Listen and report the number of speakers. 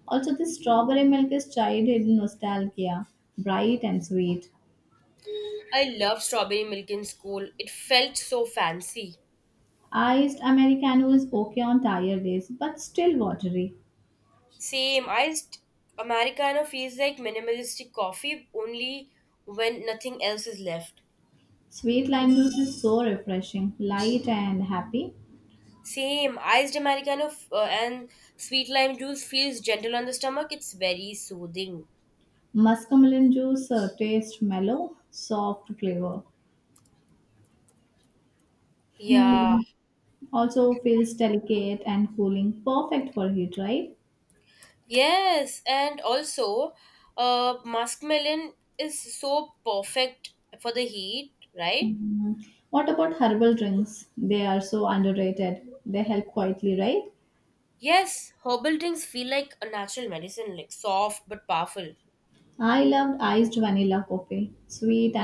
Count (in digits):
2